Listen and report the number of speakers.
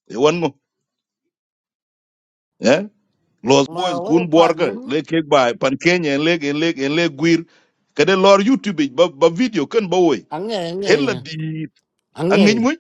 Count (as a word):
two